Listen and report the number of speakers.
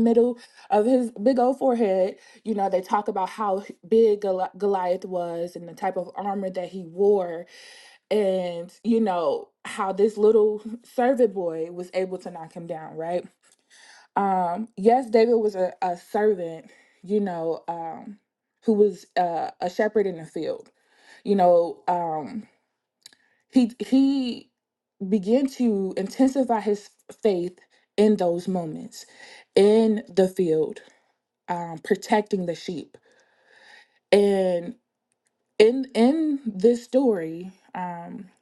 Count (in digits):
1